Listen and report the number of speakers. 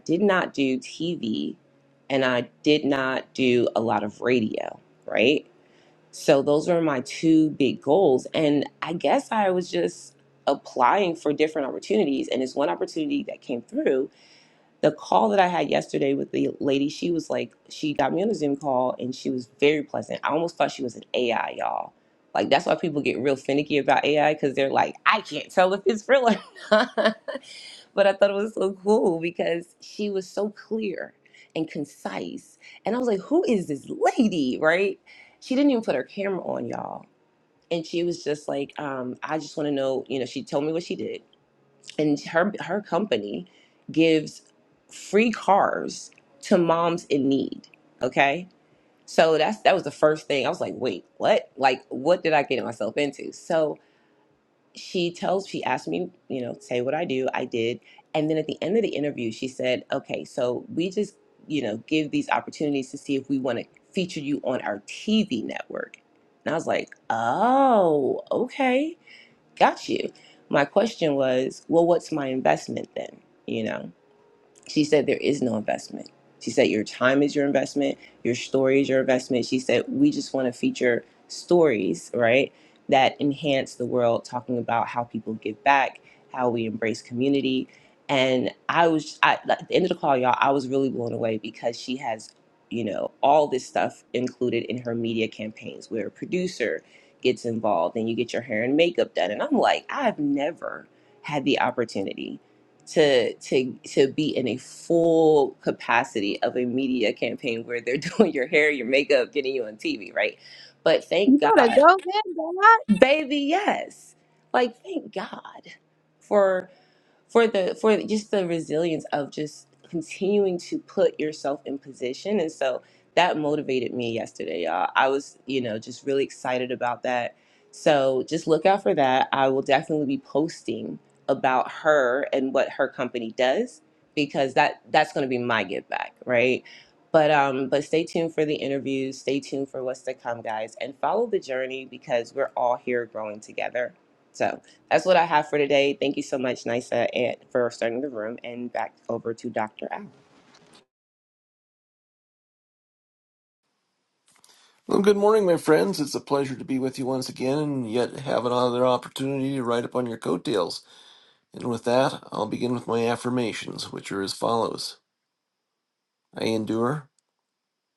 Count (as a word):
three